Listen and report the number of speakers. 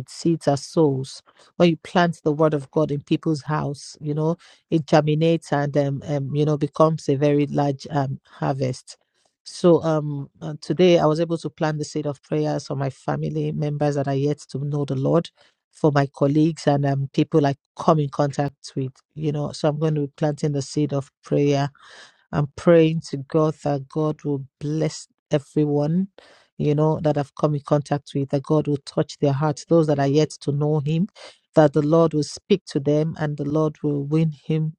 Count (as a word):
one